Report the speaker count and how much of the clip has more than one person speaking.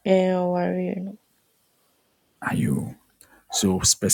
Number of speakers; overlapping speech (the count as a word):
two, no overlap